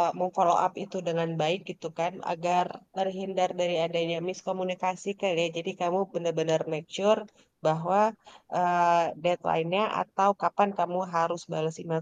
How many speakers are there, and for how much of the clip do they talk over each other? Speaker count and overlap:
one, no overlap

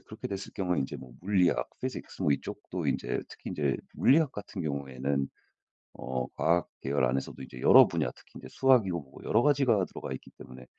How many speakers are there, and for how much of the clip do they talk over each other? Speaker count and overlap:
one, no overlap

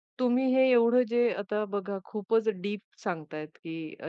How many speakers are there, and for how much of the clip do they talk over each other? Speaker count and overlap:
one, no overlap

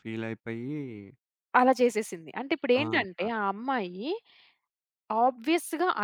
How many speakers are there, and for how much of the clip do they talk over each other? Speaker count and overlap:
two, about 9%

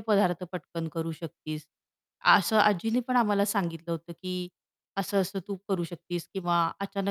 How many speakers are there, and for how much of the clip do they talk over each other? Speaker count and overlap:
one, no overlap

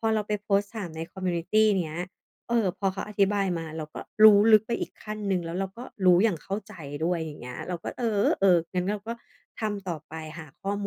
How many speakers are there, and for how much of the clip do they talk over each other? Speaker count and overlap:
one, no overlap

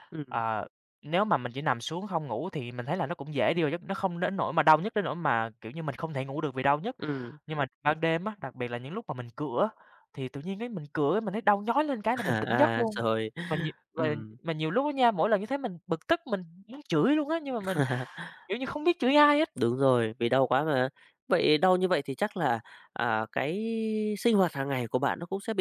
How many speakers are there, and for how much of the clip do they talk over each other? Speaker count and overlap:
two, about 2%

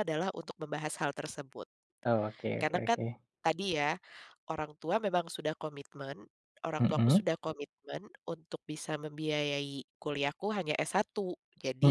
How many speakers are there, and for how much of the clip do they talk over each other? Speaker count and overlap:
two, about 8%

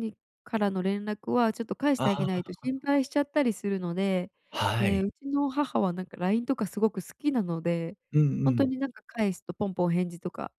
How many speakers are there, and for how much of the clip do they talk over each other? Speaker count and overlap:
two, about 6%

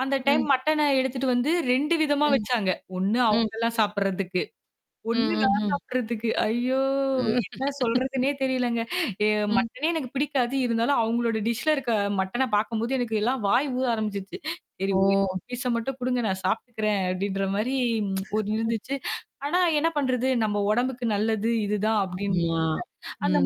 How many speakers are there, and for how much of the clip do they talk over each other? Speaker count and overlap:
two, about 10%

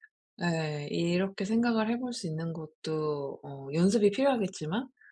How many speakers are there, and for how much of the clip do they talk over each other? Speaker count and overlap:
one, no overlap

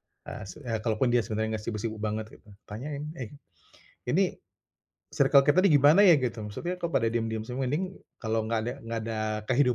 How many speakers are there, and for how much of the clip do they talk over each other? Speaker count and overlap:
one, no overlap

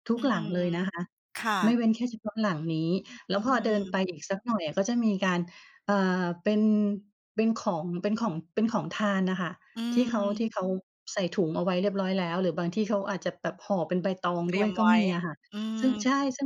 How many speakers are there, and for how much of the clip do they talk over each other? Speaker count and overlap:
two, about 12%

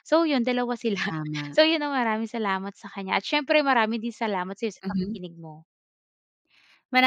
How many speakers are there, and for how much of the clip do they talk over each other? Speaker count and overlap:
two, about 7%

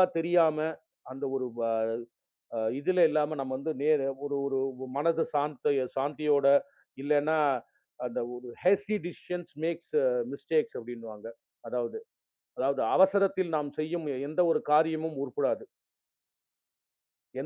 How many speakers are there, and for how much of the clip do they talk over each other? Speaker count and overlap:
one, no overlap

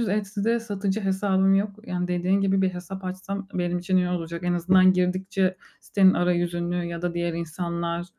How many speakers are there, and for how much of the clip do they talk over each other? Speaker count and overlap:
one, no overlap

